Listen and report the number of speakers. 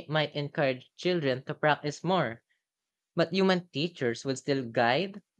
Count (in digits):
1